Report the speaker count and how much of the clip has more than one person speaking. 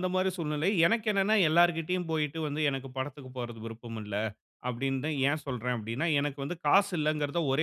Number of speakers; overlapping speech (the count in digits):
1, no overlap